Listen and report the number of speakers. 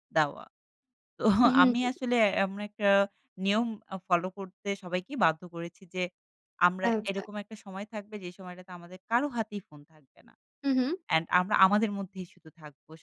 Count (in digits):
2